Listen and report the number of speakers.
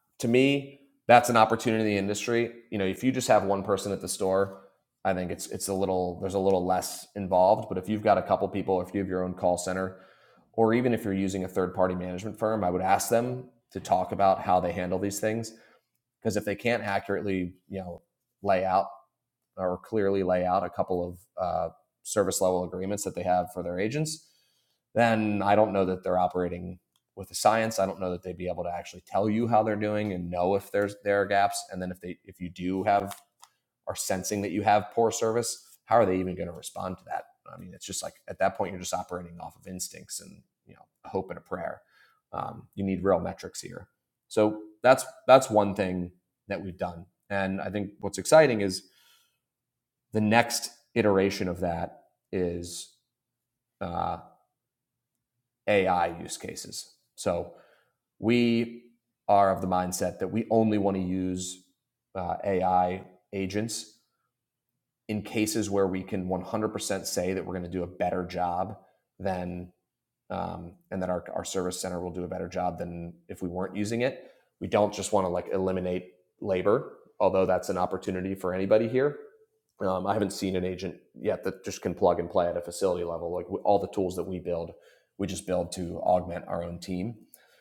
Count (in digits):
1